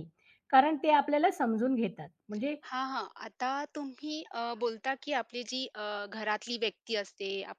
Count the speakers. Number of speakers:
2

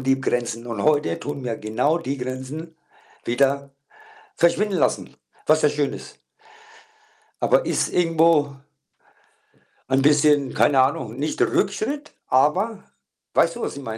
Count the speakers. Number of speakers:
1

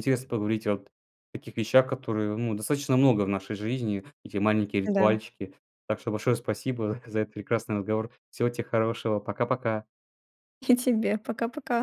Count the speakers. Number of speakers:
2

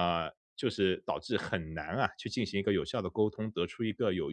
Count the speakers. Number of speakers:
1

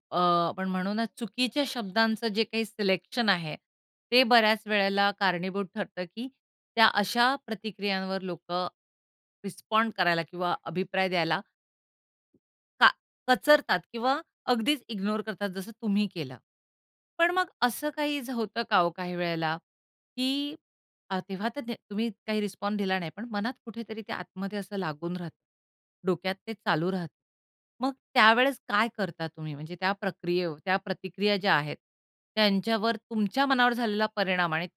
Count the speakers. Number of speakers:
1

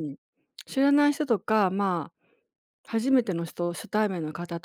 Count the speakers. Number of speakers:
1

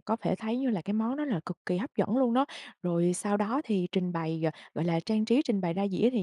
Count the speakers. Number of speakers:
1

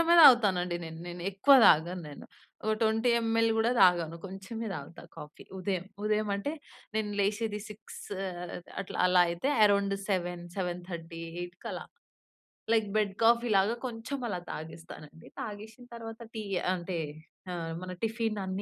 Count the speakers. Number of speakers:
1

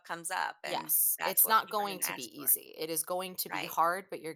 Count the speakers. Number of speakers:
2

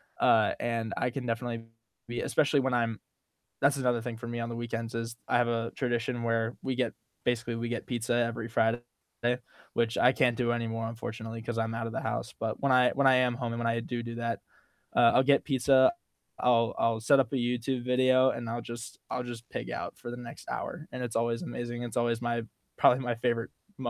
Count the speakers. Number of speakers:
1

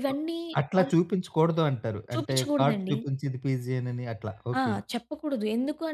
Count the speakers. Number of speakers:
2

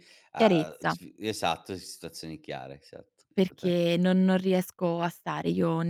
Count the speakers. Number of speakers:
2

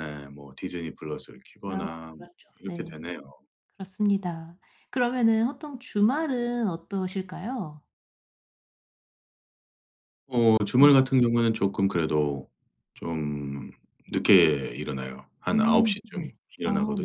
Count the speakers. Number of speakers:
2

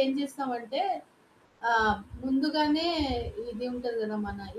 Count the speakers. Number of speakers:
1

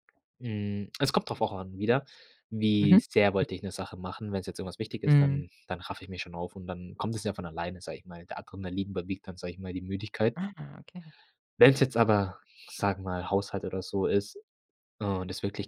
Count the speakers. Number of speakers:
2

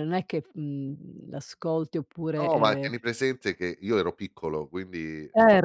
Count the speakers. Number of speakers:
2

